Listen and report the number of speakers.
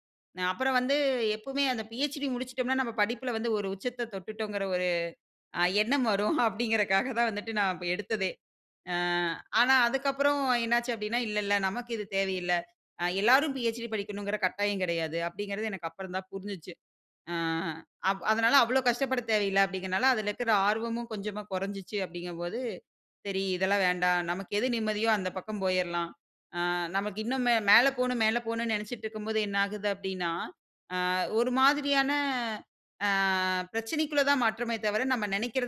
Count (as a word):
one